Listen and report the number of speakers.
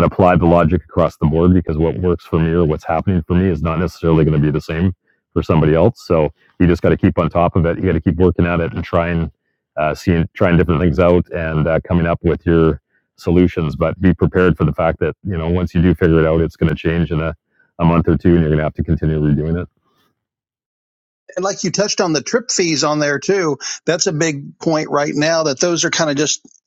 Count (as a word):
two